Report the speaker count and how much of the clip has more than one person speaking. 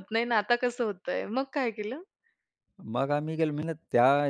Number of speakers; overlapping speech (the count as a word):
two, no overlap